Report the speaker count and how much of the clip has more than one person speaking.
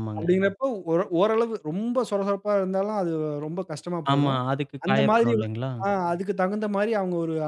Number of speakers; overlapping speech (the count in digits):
2, about 15%